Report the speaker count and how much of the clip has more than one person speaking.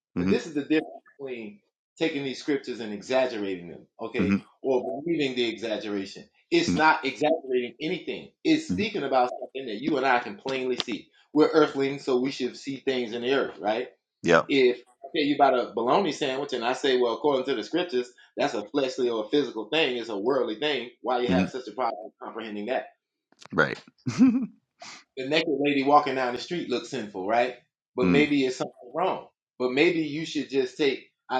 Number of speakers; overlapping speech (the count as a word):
two, about 2%